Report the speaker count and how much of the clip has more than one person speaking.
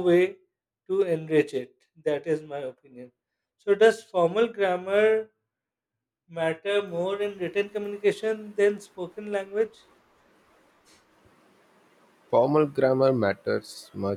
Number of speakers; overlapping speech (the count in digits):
2, no overlap